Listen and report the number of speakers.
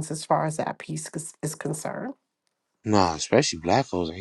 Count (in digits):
2